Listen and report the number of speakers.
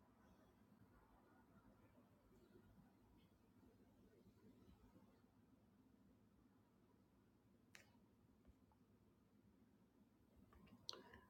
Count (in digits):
0